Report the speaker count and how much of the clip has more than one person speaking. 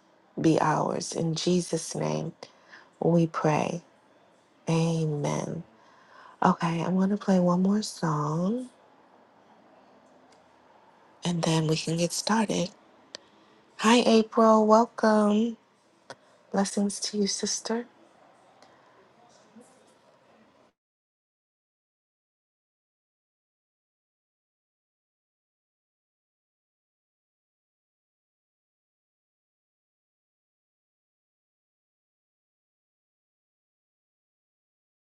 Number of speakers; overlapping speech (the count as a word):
one, no overlap